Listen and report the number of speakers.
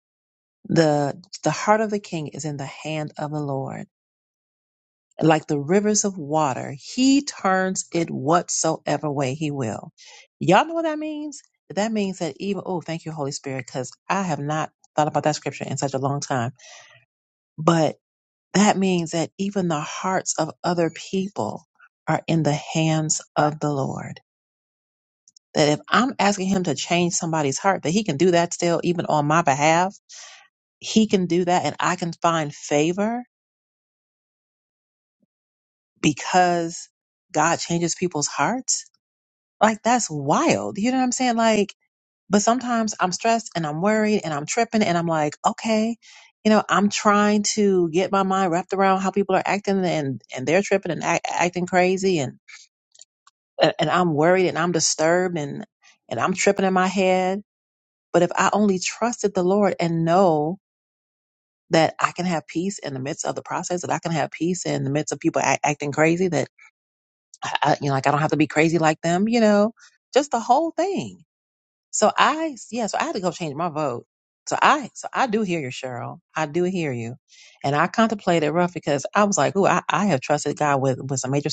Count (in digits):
1